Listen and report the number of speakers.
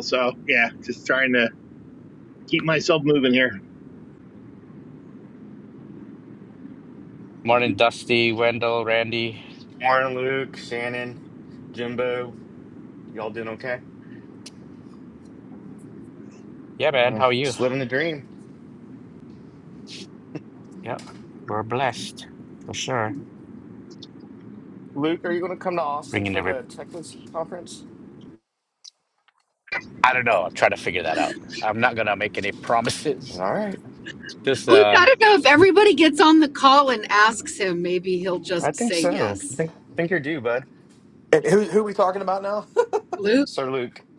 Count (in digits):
5